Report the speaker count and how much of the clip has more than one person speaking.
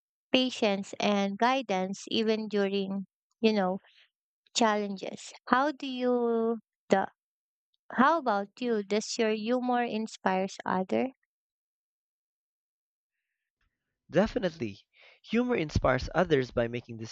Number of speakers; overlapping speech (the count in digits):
2, no overlap